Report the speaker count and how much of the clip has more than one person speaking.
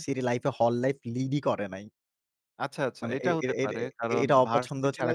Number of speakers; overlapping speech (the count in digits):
2, about 35%